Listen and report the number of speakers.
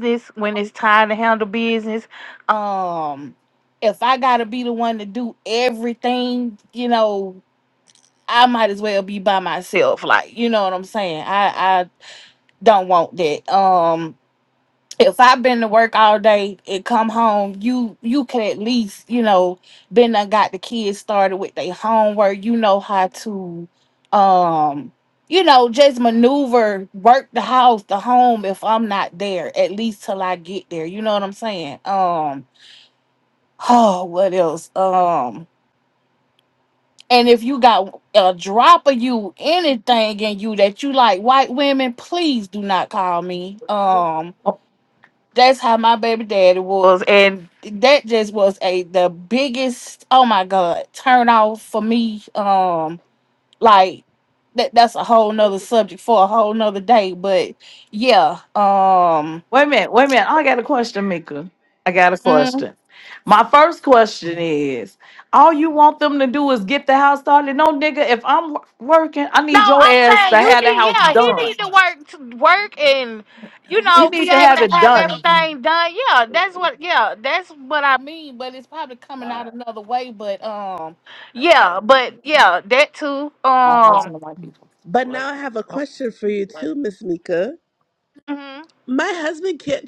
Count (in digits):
3